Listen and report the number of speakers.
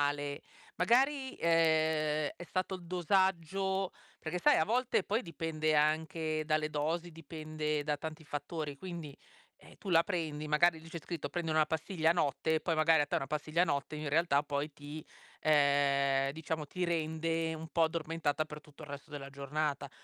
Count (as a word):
one